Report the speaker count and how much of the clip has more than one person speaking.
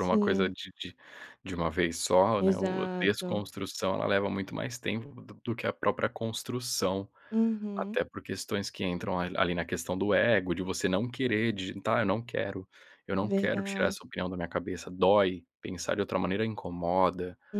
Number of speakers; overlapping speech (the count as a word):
two, about 13%